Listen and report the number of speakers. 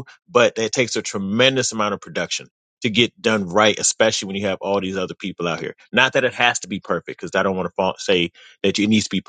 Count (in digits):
1